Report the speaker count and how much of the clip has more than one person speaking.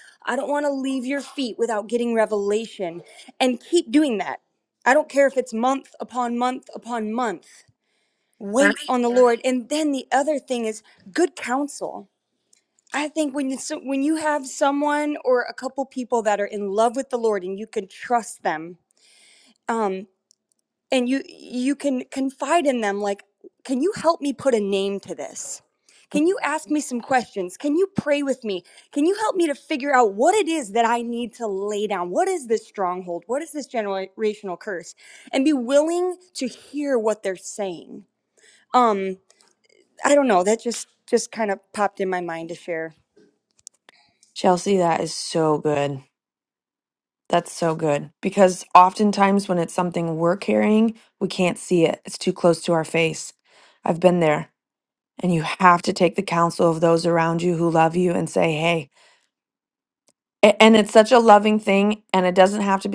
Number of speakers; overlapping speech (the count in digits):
2, under 1%